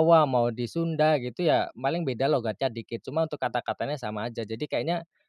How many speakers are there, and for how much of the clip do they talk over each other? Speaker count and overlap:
1, no overlap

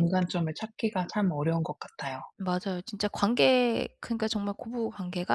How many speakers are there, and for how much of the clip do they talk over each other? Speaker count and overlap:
2, about 2%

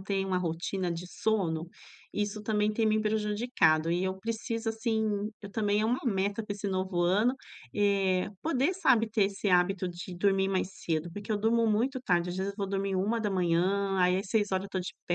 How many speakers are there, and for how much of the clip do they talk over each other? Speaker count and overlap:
1, no overlap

